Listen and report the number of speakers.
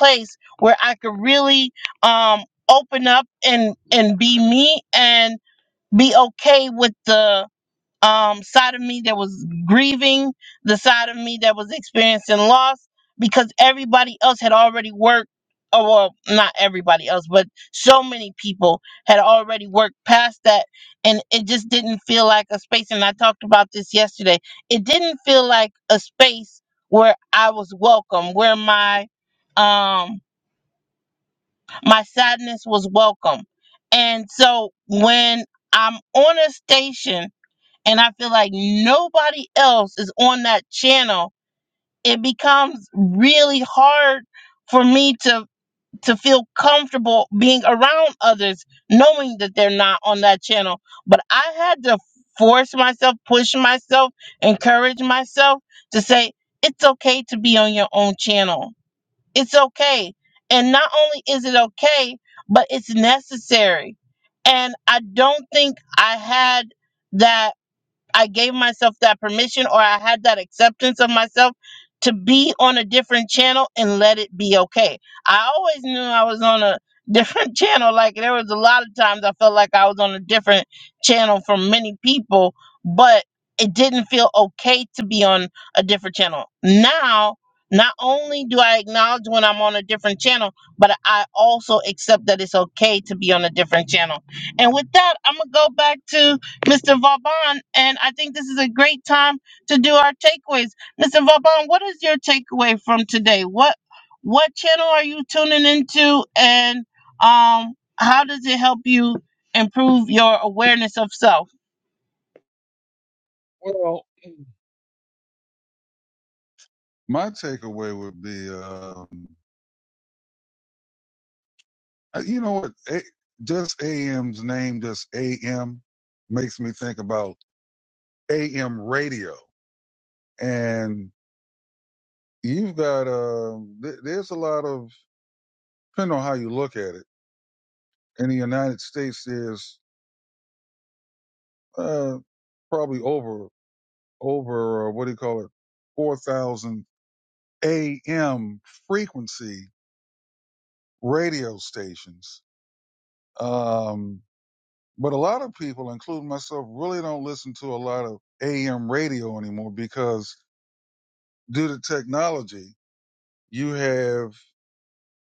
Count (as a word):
two